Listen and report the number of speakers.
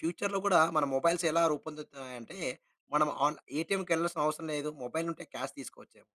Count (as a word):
one